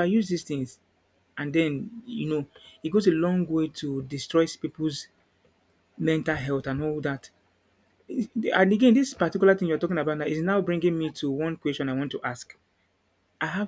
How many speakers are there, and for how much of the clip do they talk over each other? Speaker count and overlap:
1, no overlap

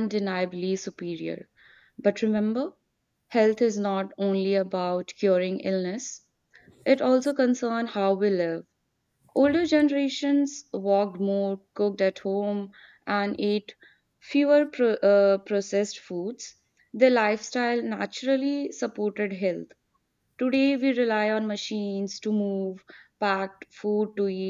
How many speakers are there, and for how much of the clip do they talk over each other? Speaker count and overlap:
1, no overlap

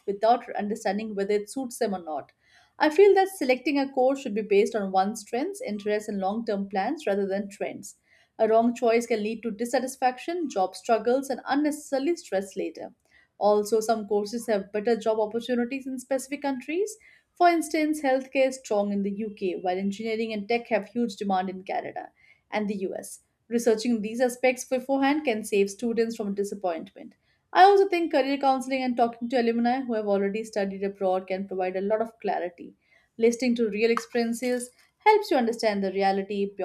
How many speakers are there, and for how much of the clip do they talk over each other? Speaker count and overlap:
1, no overlap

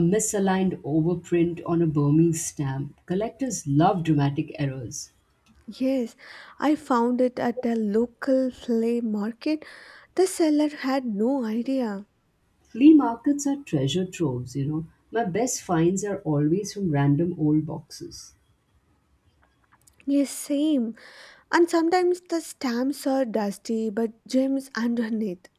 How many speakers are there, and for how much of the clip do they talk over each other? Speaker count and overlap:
2, no overlap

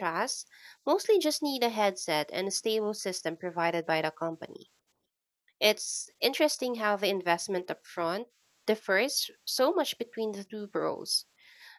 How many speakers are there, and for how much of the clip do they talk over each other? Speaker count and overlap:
1, no overlap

